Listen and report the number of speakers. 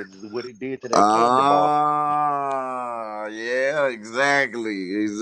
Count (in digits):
2